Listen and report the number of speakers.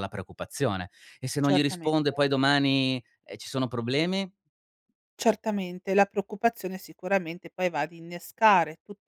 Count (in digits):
2